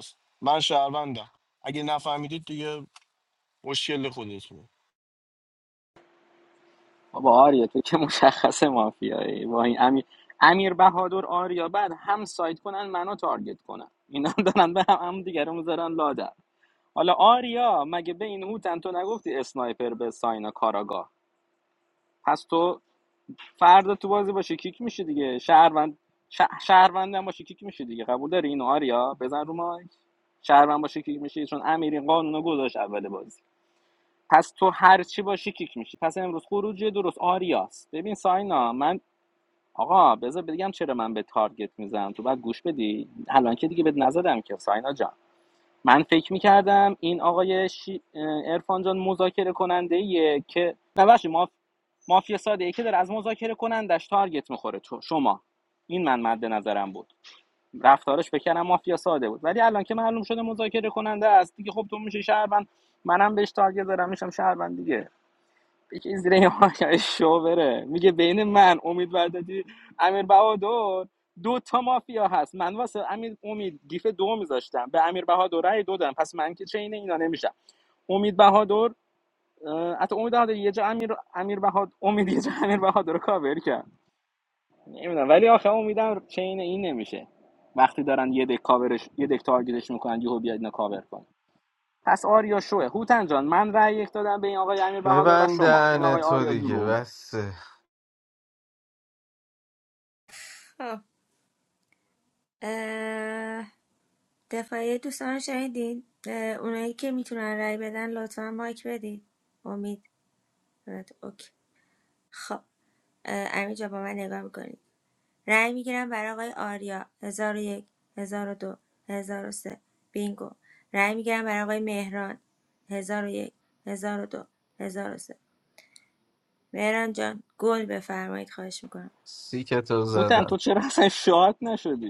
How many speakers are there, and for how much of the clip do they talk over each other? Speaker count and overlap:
4, about 2%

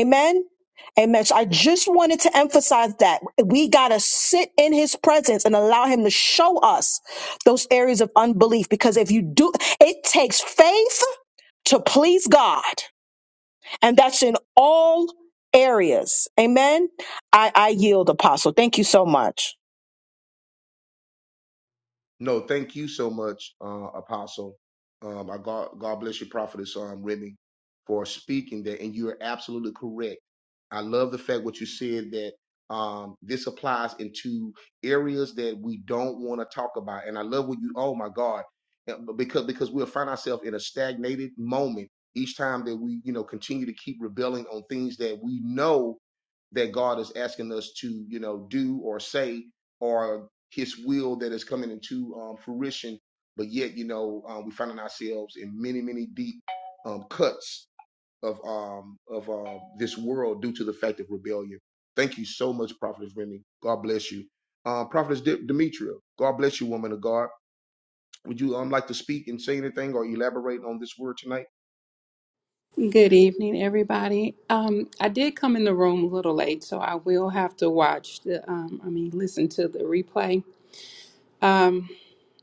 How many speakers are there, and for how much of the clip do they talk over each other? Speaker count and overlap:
3, no overlap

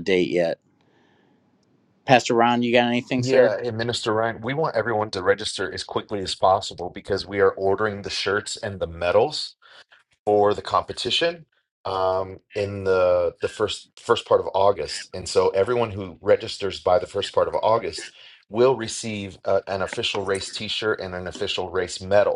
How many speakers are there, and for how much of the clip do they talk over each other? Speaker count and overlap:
2, about 1%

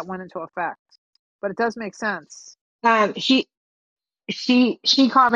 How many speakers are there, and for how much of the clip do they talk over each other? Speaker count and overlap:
2, no overlap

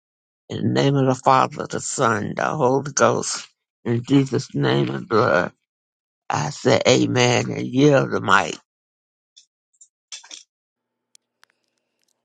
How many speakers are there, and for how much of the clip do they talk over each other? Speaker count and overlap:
1, no overlap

